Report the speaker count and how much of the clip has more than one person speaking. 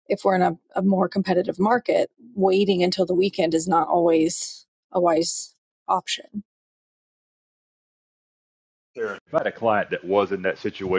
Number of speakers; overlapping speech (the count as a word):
two, no overlap